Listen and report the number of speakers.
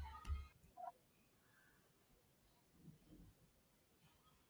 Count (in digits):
0